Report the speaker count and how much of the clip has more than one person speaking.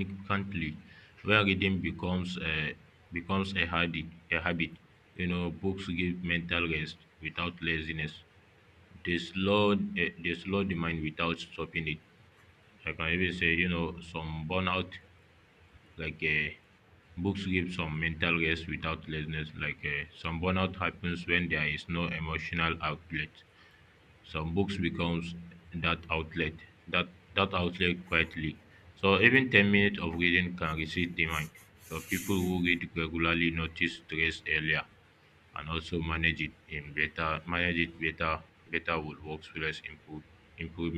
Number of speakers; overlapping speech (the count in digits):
1, no overlap